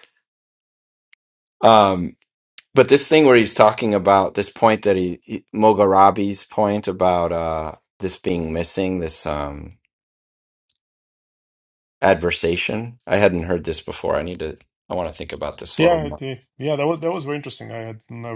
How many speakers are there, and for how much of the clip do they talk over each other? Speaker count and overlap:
2, about 2%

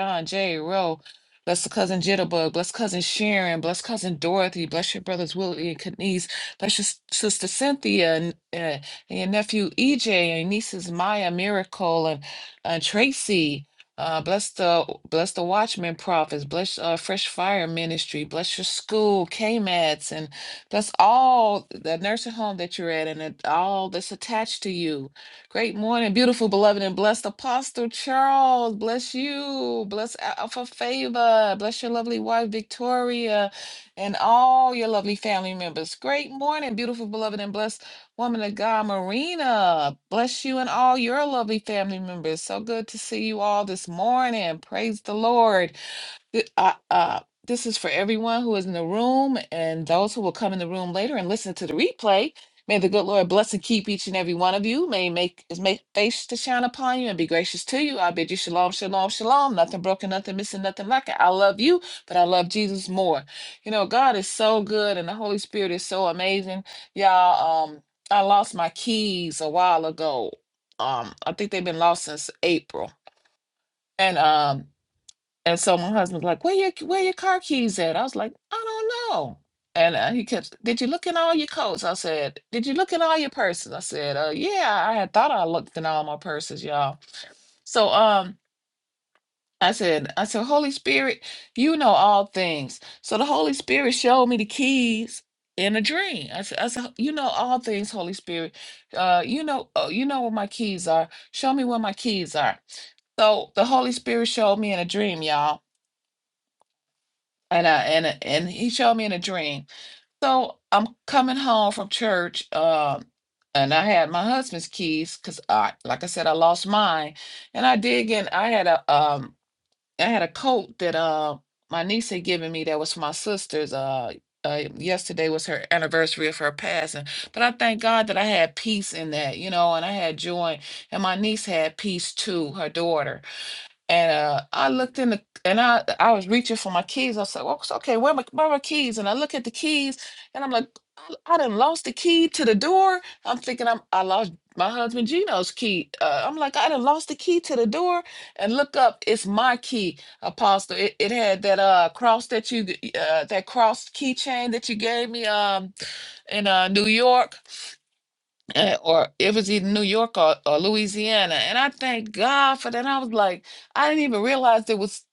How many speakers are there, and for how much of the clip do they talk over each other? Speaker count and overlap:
1, no overlap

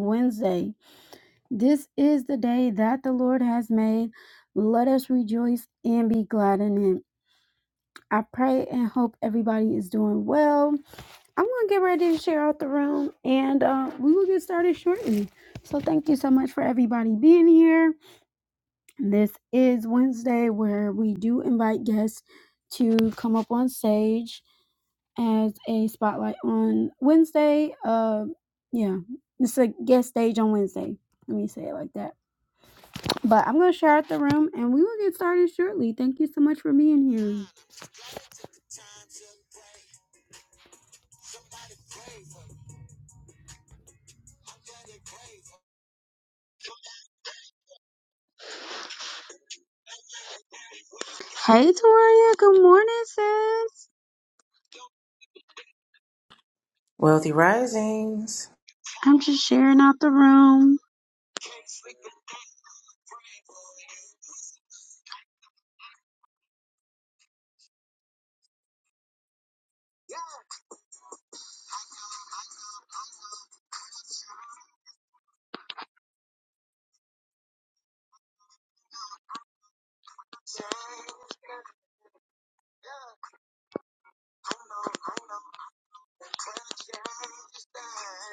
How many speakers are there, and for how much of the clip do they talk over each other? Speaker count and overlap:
2, no overlap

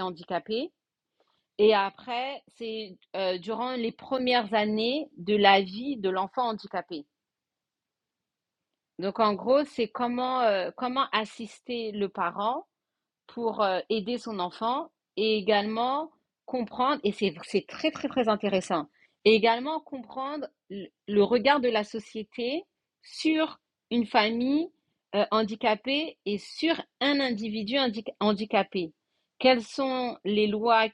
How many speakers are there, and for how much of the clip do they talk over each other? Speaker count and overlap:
1, no overlap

